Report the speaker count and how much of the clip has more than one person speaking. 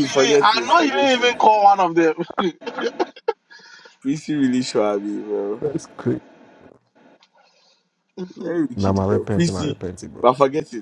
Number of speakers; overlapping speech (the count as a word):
three, about 22%